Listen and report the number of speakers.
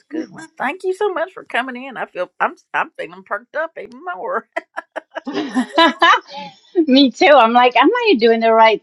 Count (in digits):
2